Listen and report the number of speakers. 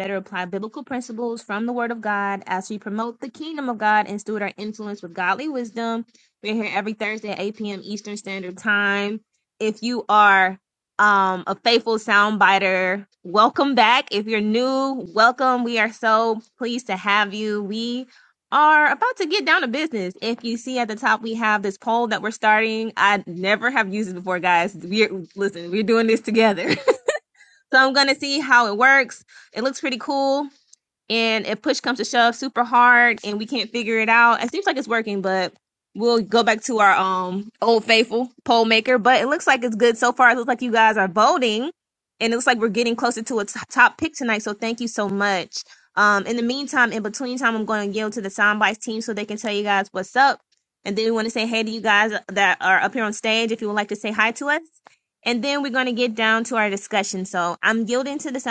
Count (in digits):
1